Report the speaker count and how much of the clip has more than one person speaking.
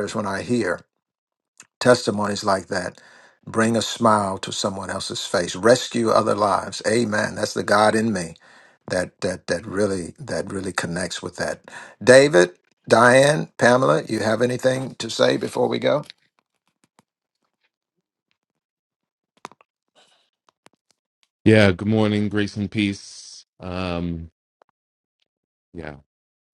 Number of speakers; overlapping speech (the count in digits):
2, no overlap